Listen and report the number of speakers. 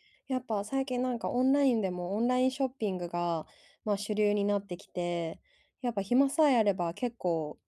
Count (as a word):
one